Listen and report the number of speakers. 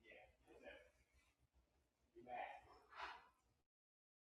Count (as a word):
zero